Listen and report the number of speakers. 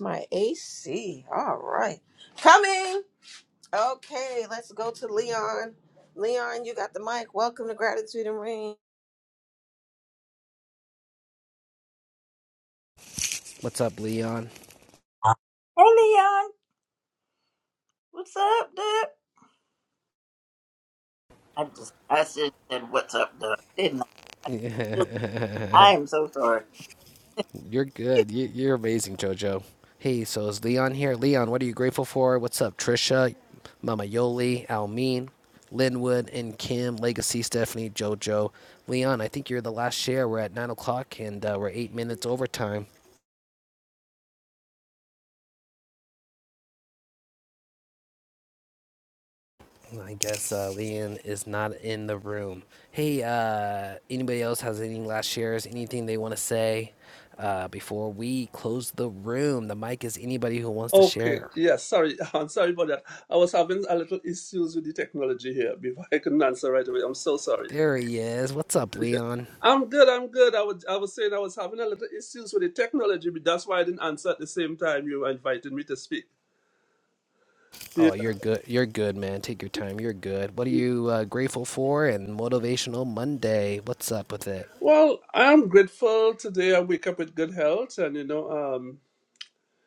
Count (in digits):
4